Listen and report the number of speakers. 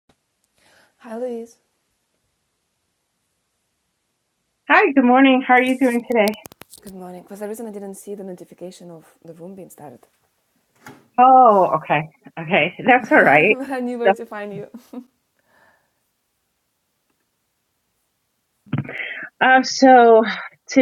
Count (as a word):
two